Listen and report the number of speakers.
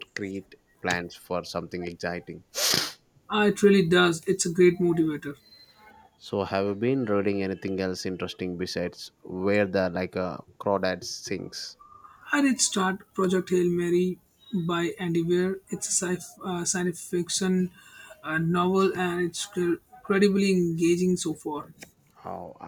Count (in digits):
2